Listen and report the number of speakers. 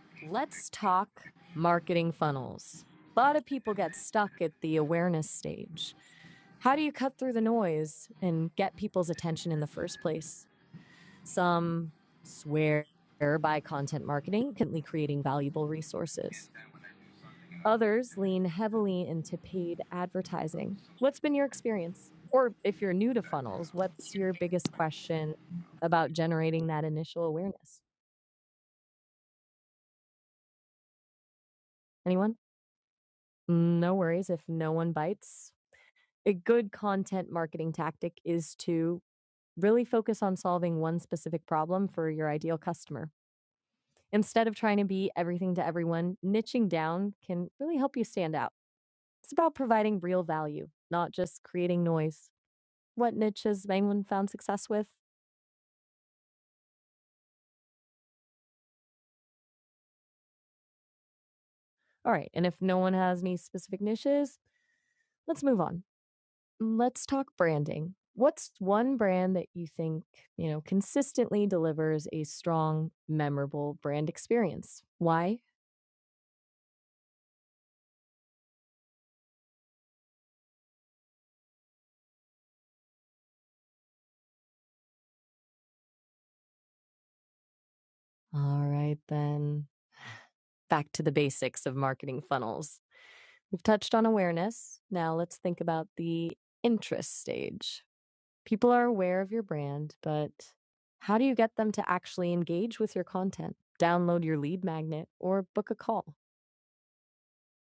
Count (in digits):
1